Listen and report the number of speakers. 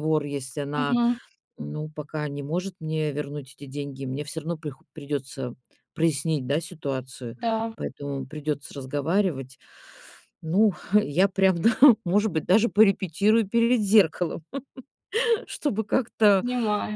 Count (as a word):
two